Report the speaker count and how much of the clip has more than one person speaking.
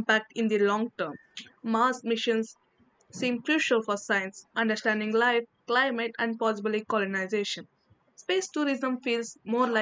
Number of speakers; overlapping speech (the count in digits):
1, no overlap